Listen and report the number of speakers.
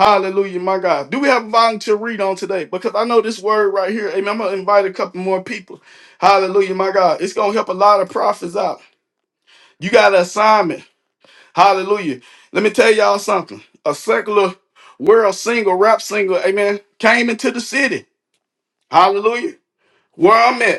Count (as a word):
one